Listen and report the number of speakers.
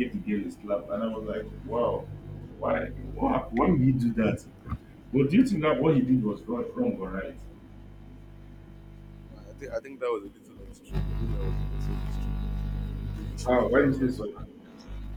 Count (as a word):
two